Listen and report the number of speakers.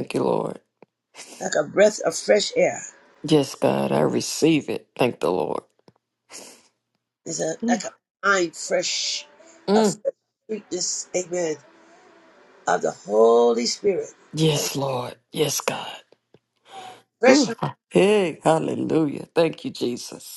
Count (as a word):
two